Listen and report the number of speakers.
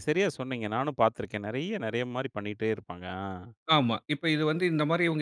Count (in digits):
2